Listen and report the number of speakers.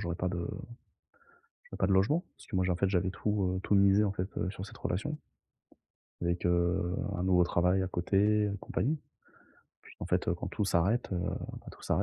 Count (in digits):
1